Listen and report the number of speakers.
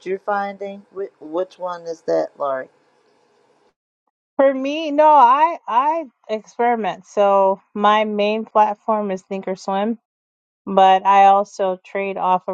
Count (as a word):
two